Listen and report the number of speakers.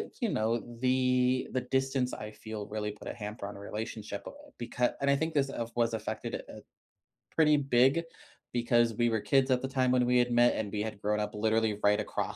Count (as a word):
one